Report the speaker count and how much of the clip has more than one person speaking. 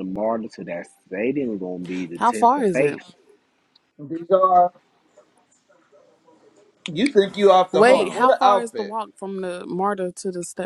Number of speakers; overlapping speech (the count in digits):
3, about 19%